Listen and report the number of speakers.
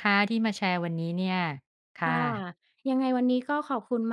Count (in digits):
2